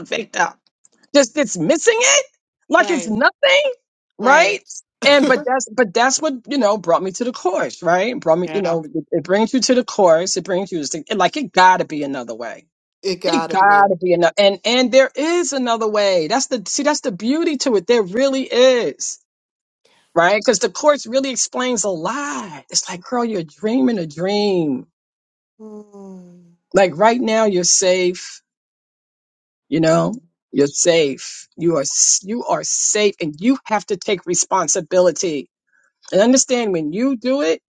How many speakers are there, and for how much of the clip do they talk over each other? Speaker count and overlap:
two, about 5%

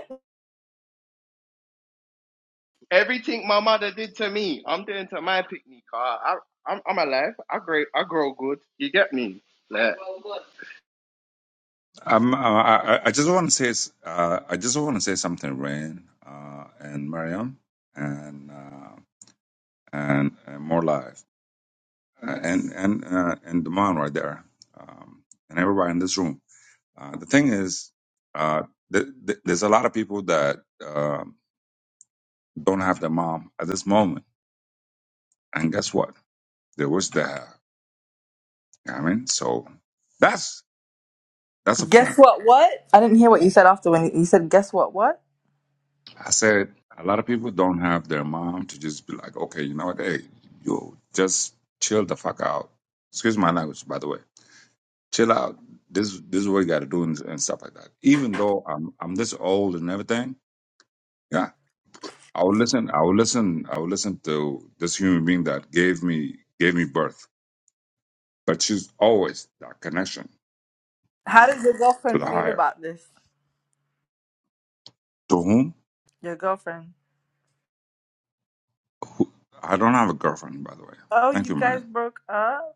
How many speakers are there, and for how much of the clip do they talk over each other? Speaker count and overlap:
three, about 2%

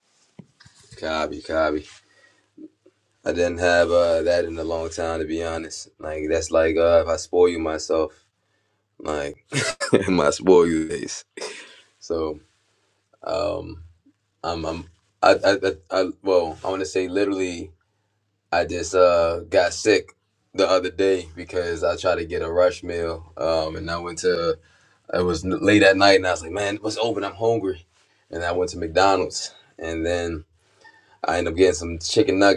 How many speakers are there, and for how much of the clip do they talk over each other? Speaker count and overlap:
one, no overlap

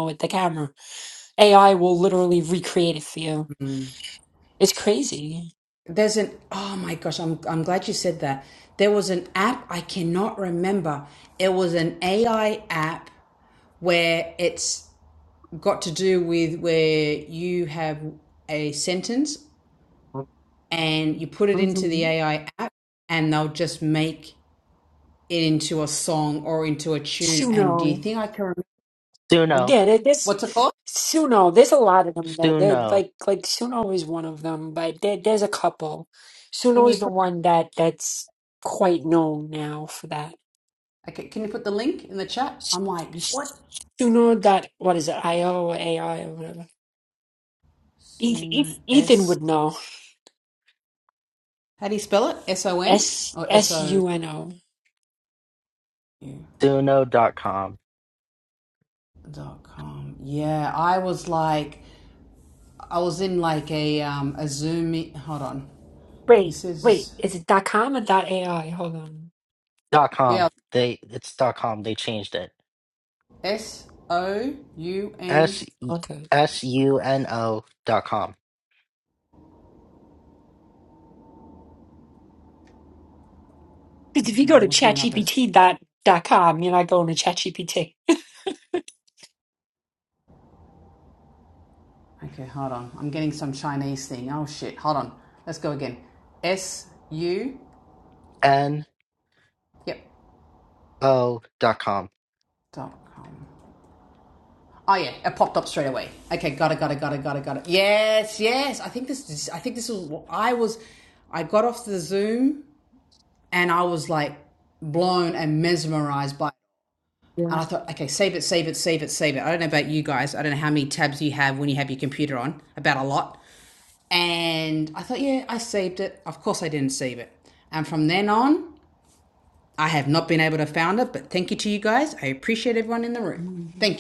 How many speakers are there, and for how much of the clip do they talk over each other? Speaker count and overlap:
three, about 5%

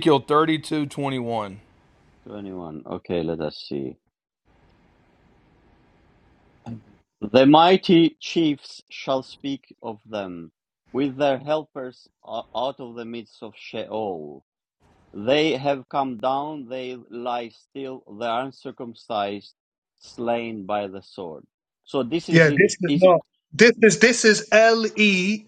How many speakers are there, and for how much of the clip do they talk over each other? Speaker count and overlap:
three, about 3%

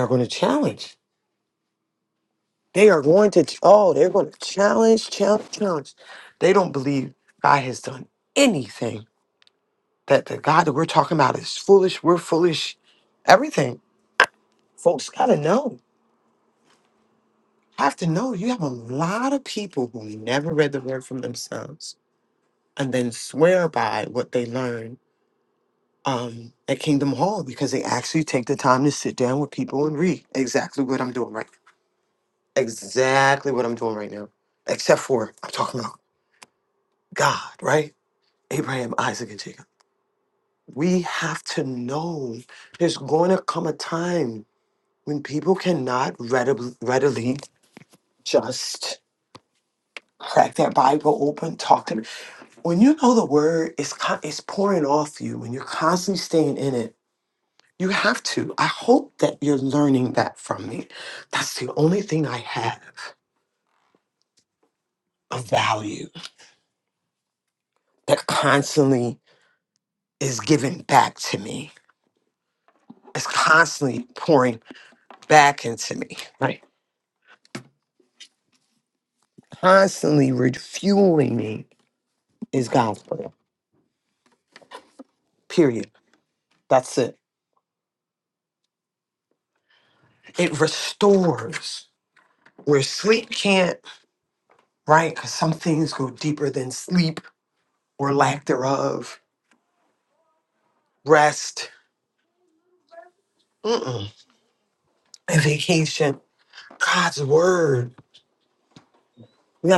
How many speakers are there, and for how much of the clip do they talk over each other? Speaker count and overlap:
one, no overlap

